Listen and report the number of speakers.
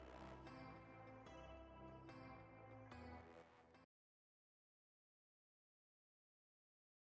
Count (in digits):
0